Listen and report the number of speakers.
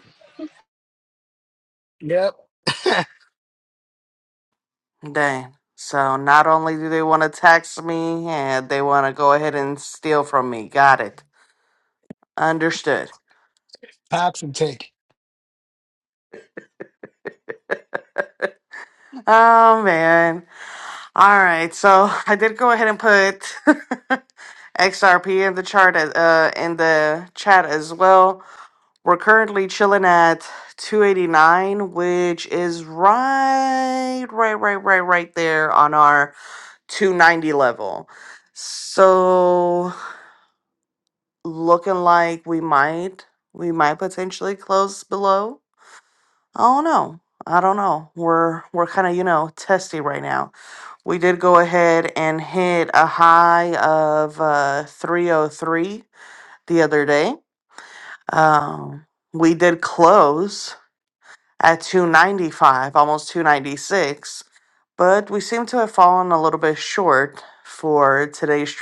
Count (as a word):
two